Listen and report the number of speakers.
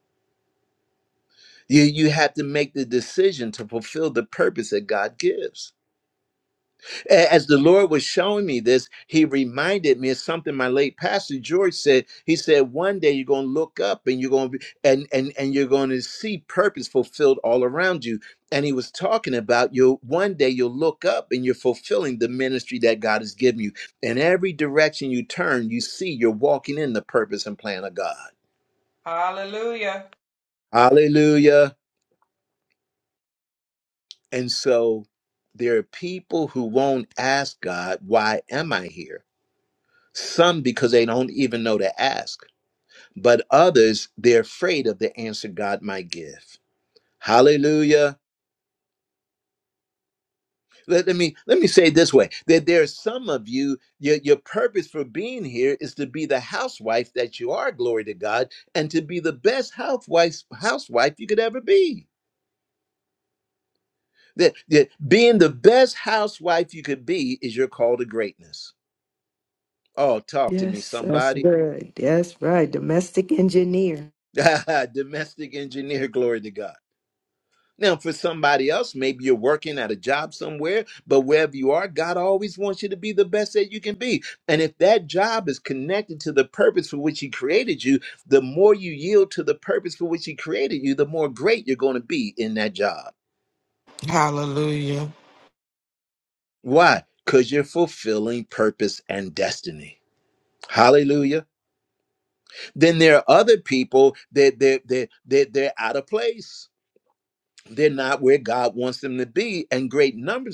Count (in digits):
4